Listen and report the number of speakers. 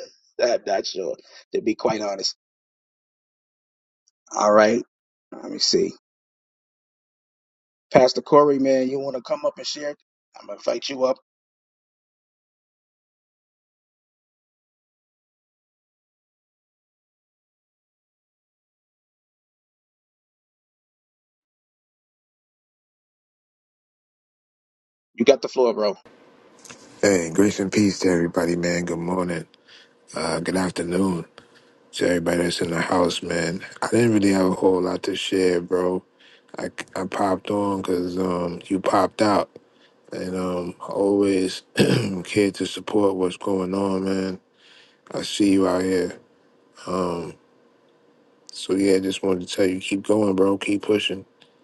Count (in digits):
2